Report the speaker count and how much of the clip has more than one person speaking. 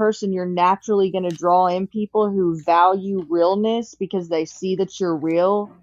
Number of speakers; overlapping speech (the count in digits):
1, no overlap